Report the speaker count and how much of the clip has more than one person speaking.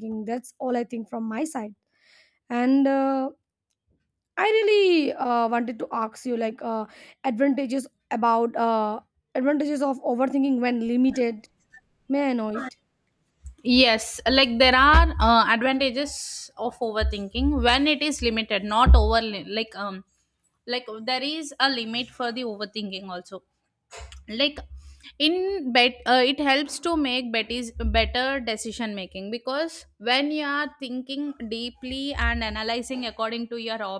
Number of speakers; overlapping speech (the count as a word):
two, no overlap